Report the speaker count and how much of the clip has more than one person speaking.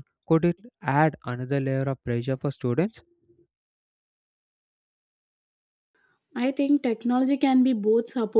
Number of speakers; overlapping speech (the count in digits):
2, no overlap